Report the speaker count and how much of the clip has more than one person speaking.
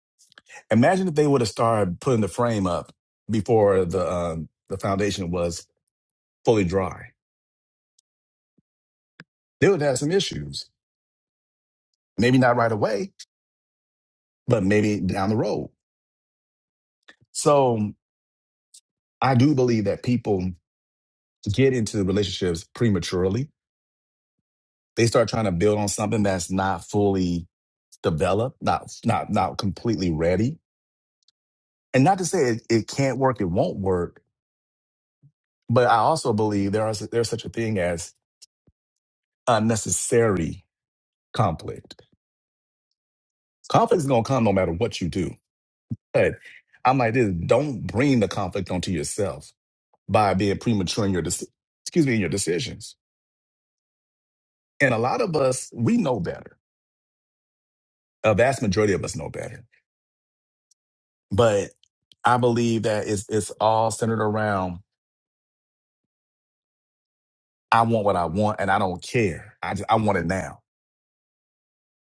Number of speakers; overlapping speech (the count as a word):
one, no overlap